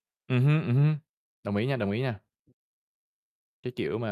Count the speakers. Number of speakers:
one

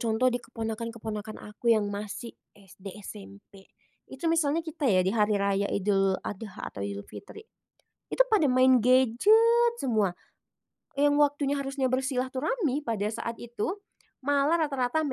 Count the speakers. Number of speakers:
one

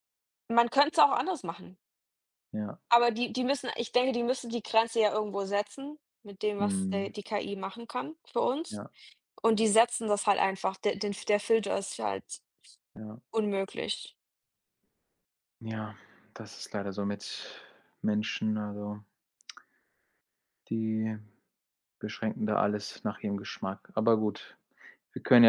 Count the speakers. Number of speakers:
two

